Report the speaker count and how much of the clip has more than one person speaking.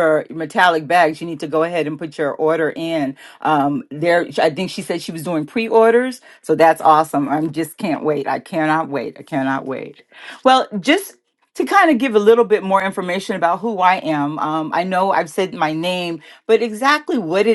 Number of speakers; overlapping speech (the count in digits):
1, no overlap